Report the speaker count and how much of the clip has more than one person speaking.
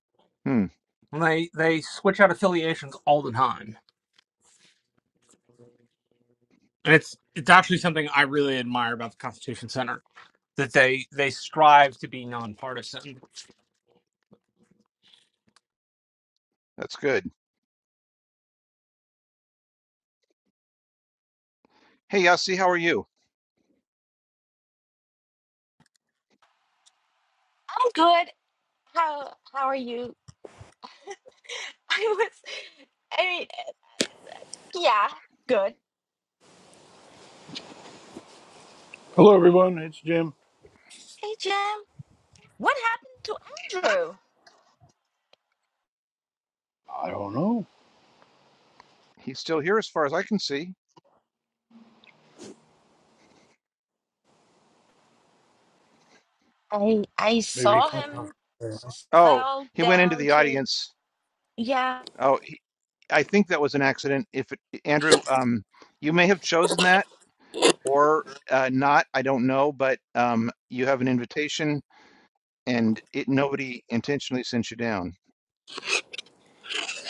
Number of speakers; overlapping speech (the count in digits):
4, about 2%